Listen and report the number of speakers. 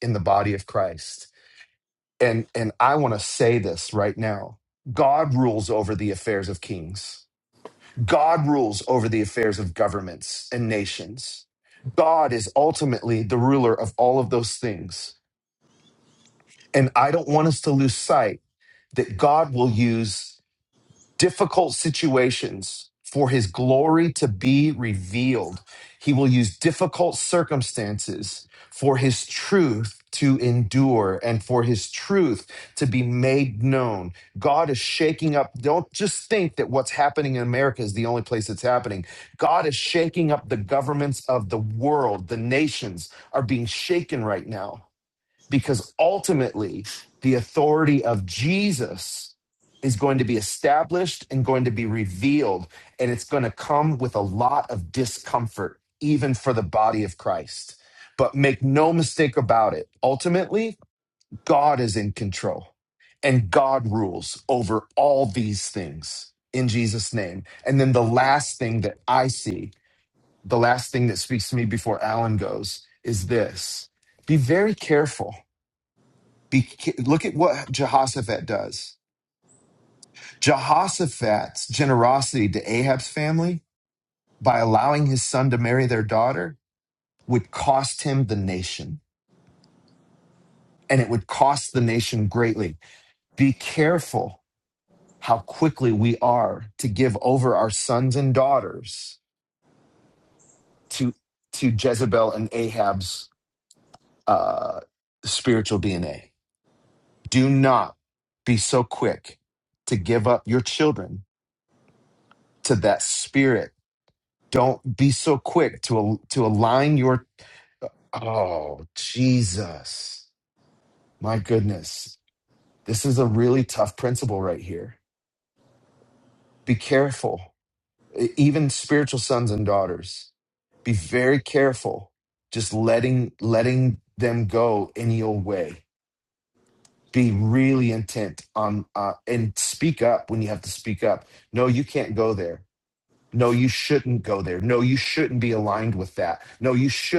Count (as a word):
one